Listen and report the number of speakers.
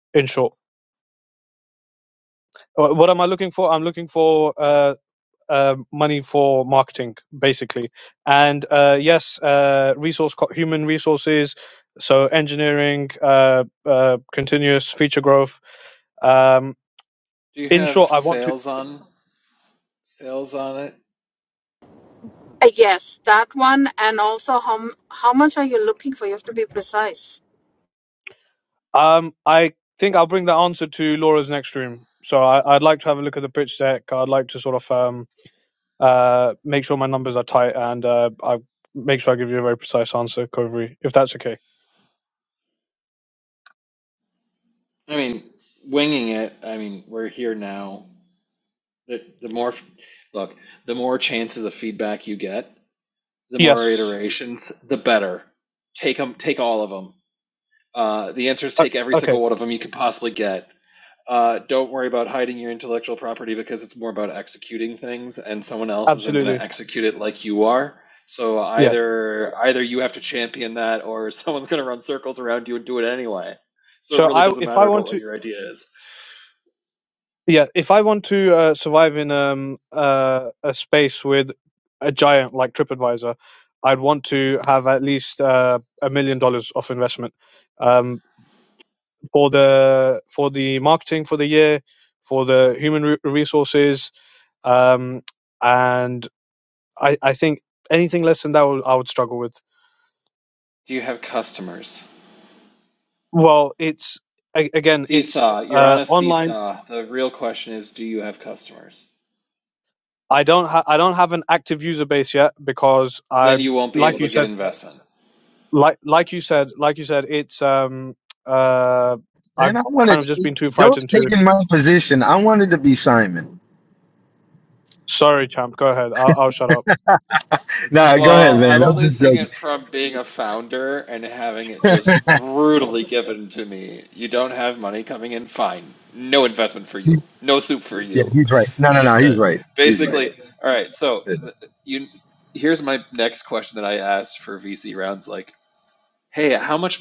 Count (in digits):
4